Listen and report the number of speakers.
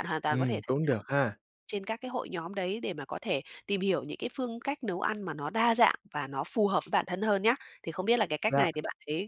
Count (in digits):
2